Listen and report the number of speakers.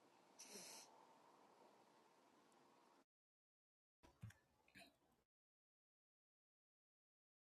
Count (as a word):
zero